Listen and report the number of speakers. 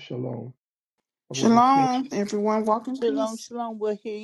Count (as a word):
three